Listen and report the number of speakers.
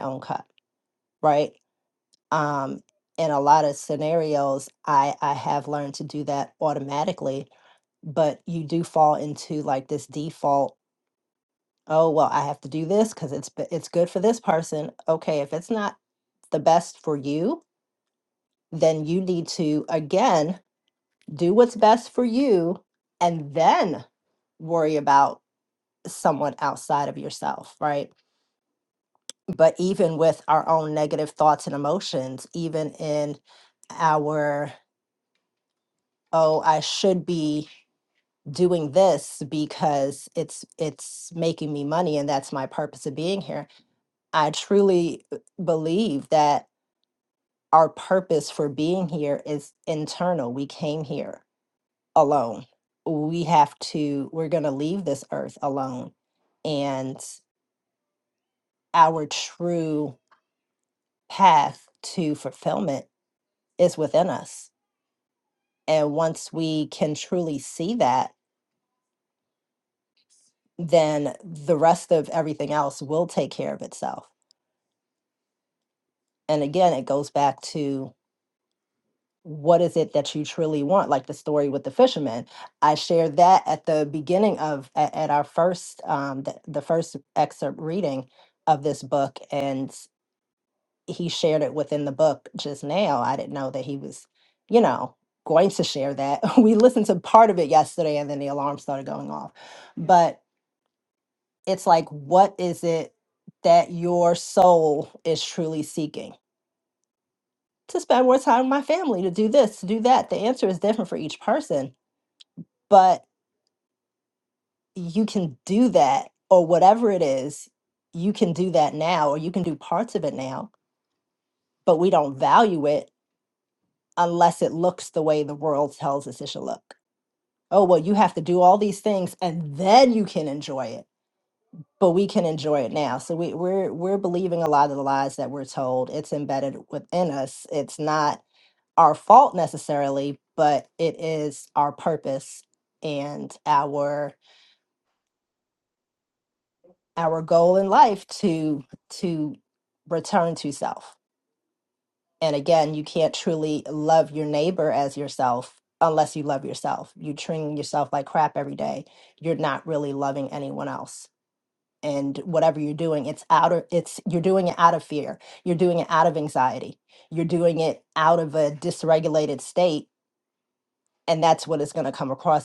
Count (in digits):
1